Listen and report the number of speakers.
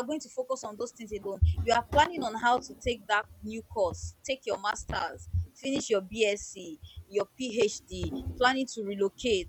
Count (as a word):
one